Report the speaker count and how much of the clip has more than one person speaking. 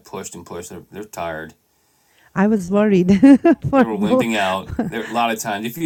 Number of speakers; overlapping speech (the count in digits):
2, about 9%